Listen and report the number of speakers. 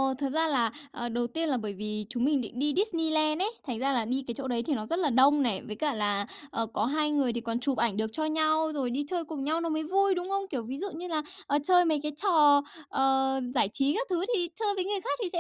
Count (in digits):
1